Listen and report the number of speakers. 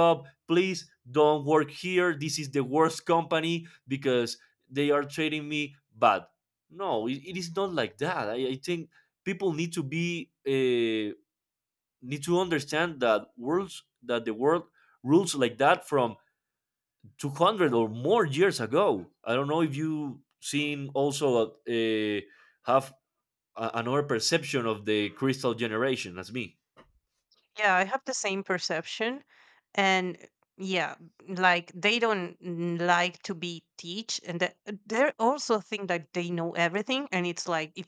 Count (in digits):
2